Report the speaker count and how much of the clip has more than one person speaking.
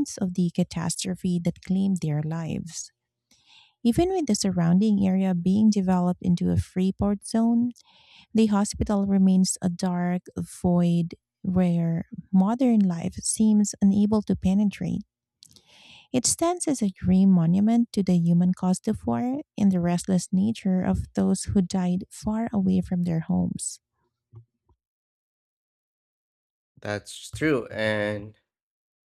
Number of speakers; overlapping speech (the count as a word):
two, no overlap